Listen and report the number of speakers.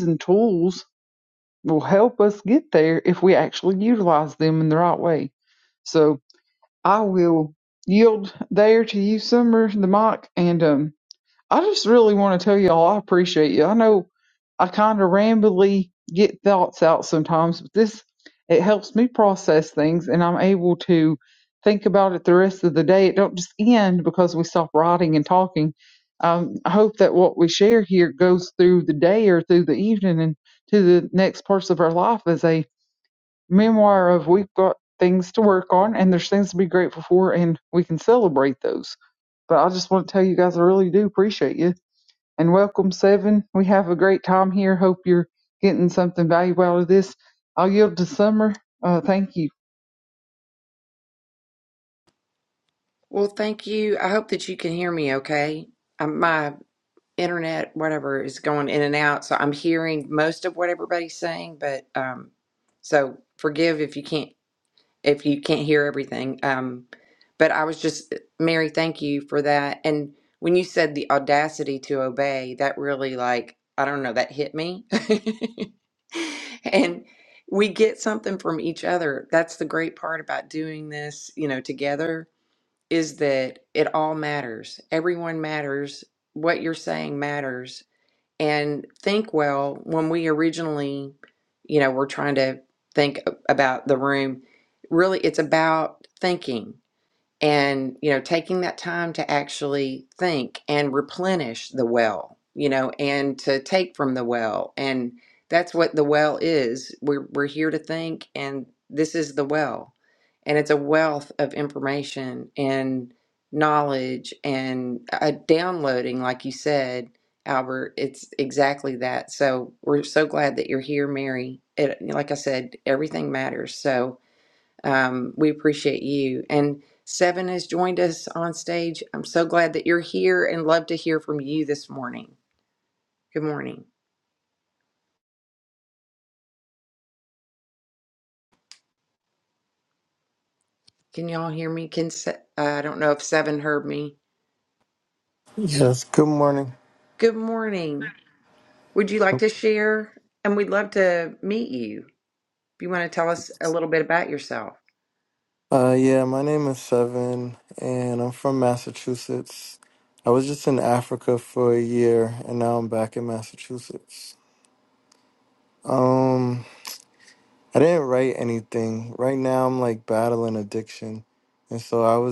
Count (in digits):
3